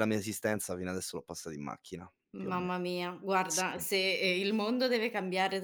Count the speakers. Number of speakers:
2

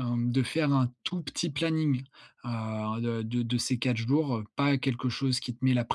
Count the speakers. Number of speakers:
1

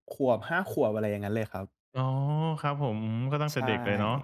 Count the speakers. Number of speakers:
2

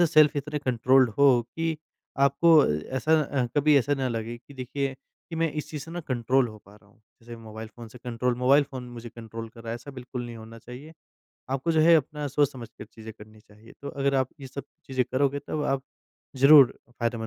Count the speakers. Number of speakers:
1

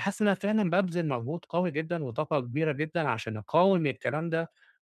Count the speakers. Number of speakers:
1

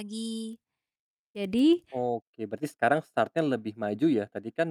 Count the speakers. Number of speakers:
2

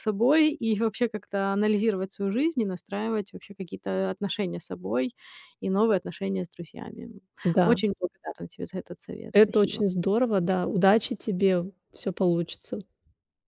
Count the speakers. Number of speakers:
2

